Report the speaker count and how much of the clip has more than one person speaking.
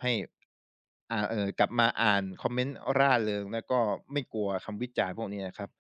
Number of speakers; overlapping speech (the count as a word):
one, no overlap